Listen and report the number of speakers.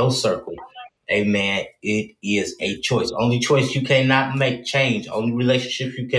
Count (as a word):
one